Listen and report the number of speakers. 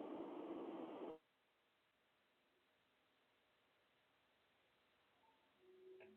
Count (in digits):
0